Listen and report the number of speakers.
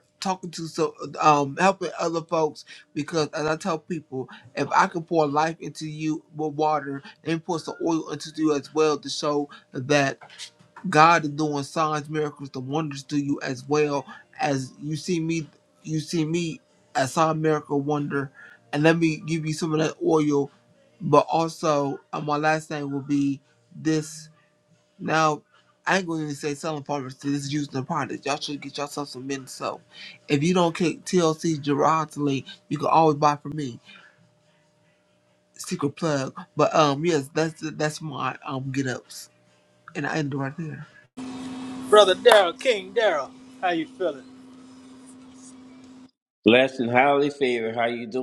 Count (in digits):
3